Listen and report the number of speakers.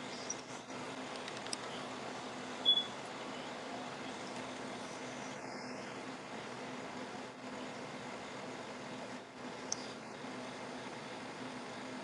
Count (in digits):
0